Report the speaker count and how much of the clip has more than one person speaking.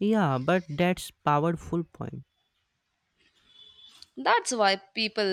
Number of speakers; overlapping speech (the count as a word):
two, no overlap